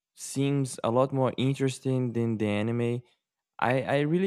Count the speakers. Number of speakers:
1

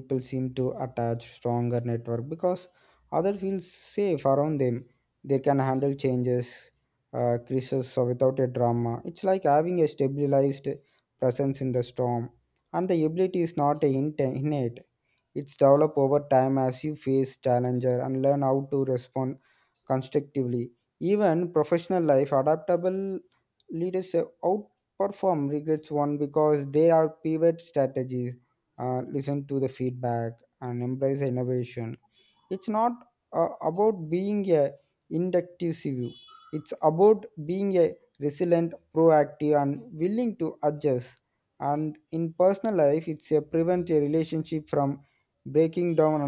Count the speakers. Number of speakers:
1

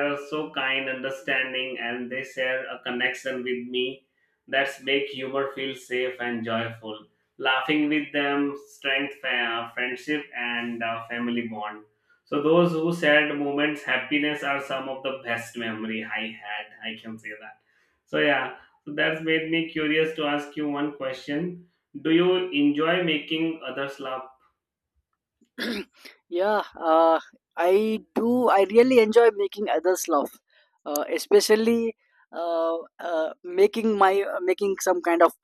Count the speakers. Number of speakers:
2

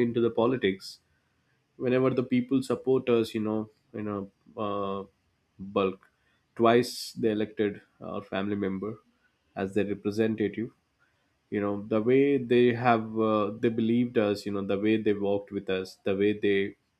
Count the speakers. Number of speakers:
1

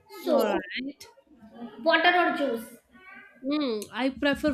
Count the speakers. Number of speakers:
2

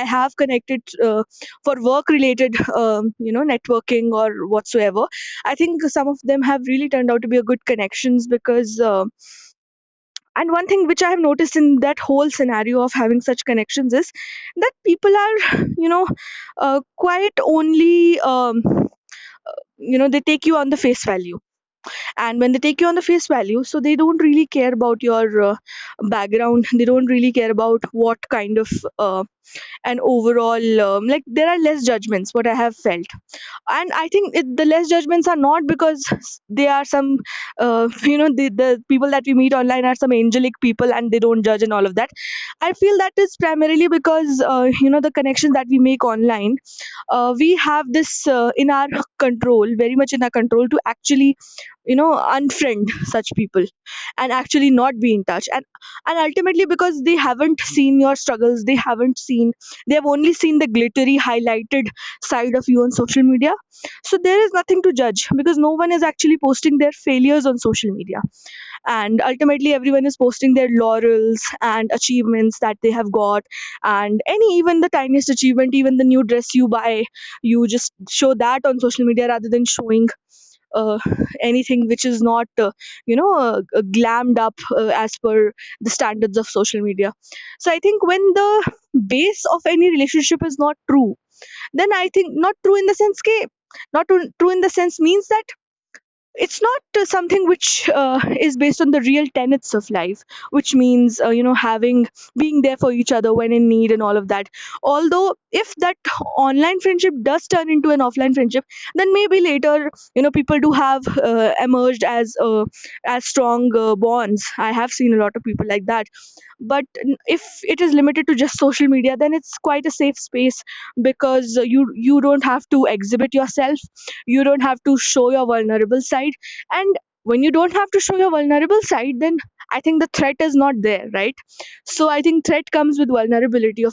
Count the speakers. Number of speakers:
1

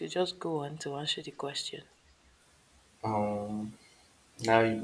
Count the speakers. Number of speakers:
2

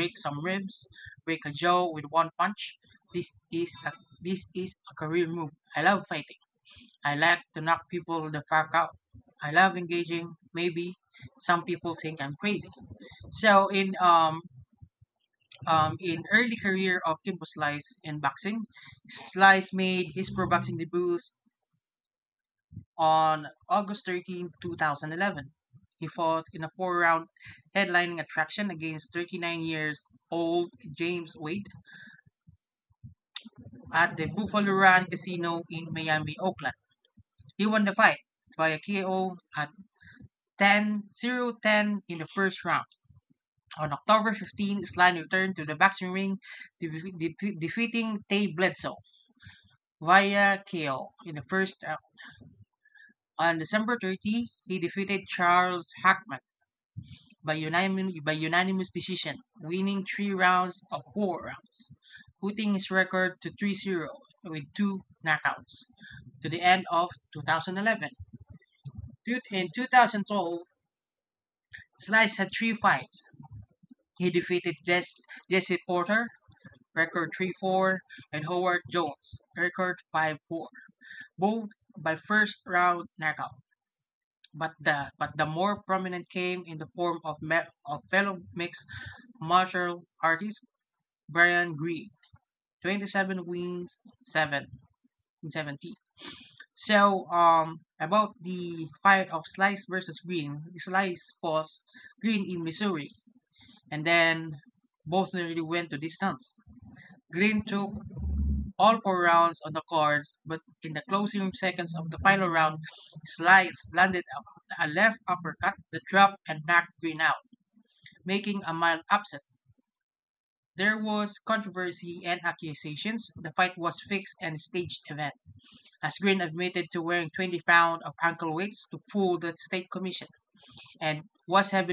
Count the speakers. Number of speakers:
1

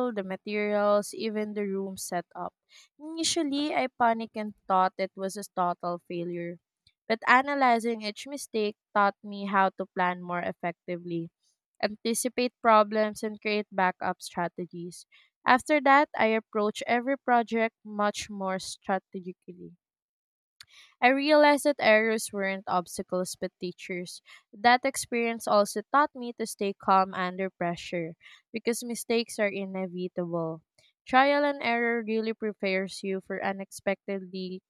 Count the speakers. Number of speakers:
1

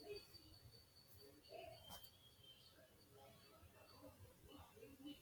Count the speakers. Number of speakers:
0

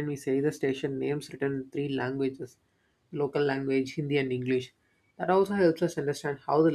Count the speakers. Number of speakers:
1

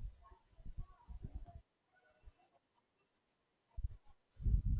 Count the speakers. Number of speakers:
0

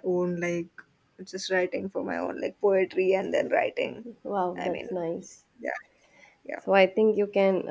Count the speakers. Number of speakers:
2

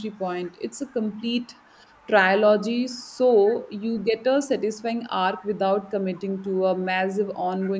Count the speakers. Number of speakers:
1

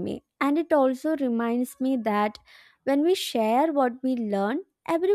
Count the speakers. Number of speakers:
1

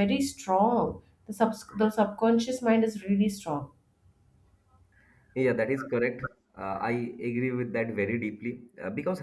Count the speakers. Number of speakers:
2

